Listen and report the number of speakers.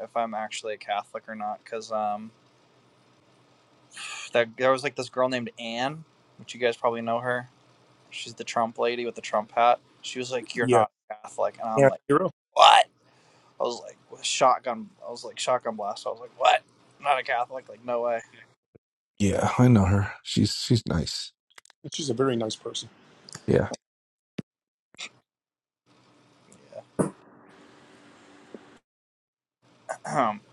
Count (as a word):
three